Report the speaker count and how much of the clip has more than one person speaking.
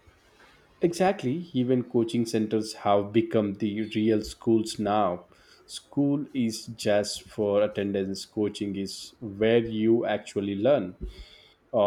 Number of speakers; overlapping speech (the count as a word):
one, no overlap